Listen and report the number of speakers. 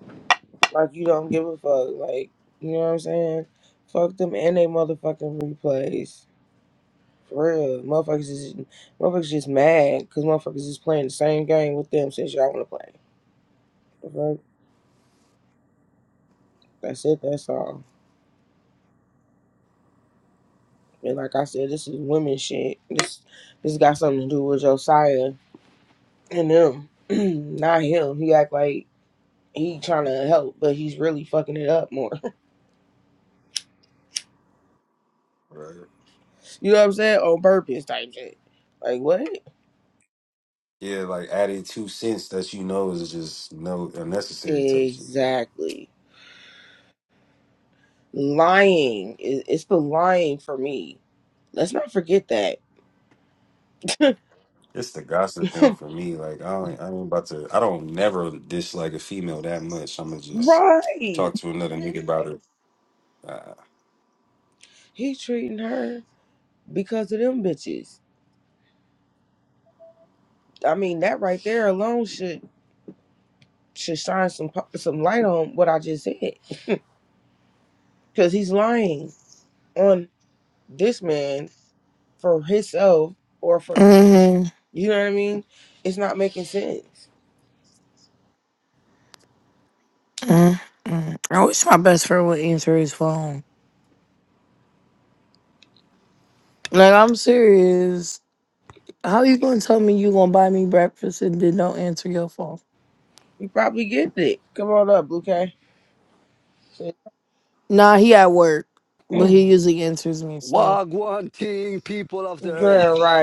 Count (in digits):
4